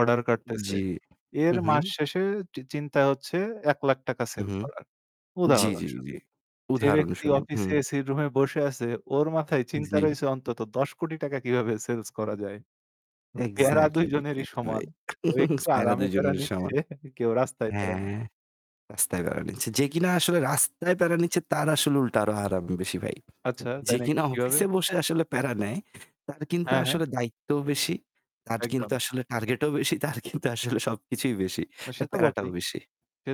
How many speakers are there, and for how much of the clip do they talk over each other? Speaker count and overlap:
two, about 21%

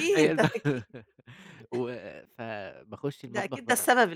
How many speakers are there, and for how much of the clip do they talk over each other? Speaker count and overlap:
two, about 21%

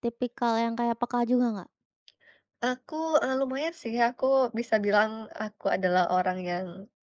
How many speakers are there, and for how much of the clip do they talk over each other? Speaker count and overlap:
two, no overlap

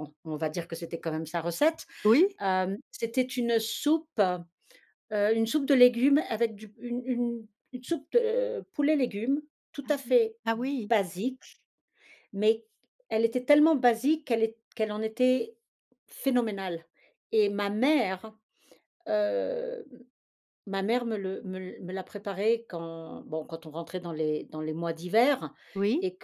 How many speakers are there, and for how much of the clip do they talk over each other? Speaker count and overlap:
two, about 1%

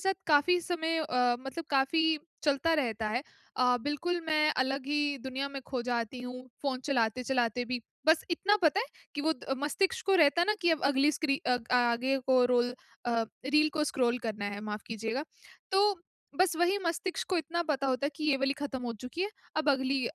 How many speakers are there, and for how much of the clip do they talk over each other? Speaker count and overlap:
one, no overlap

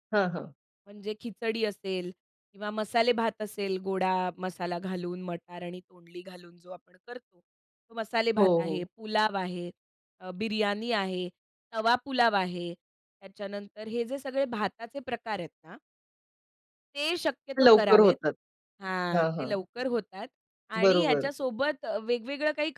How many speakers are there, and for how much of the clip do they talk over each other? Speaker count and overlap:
two, about 9%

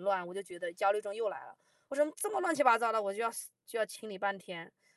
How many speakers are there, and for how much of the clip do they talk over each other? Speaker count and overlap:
one, no overlap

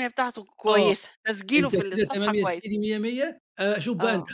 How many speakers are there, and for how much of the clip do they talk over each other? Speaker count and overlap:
two, about 37%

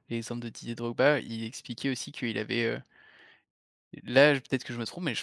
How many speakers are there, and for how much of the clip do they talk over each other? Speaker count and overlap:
one, no overlap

